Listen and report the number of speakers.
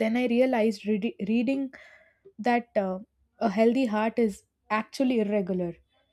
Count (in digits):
1